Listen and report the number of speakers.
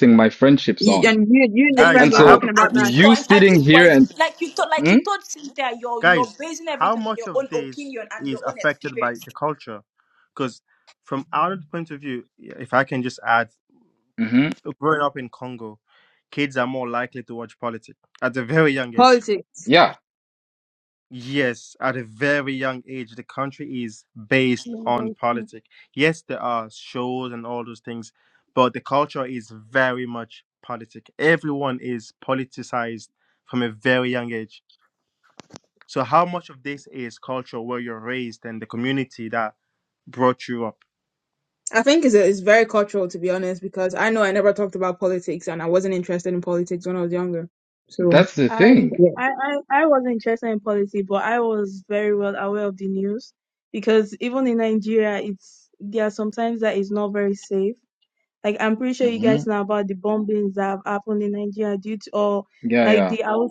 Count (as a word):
five